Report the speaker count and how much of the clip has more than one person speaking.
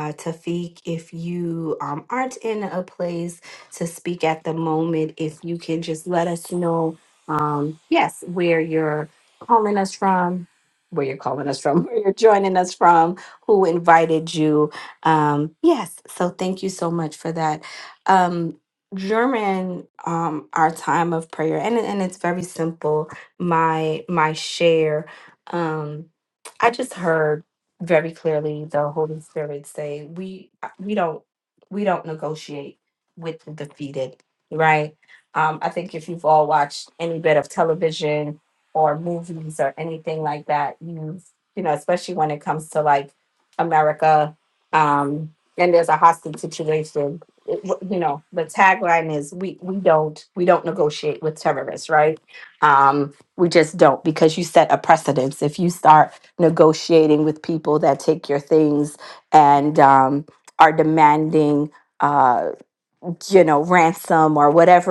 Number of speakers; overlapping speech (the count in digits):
1, no overlap